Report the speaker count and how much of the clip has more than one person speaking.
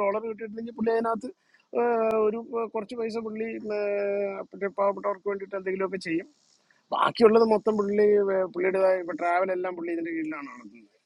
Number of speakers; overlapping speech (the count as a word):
one, no overlap